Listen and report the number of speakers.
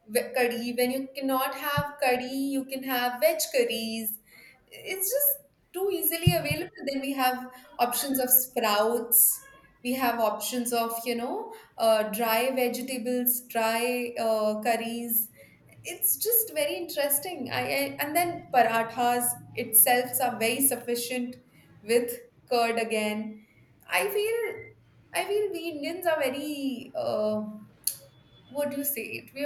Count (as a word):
one